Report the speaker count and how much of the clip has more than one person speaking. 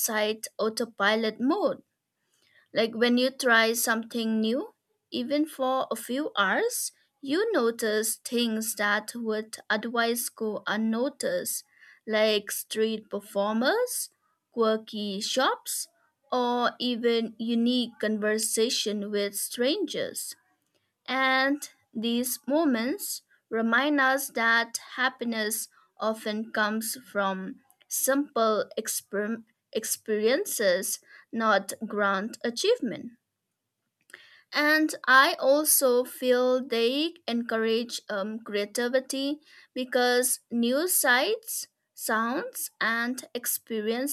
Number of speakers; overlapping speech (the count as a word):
one, no overlap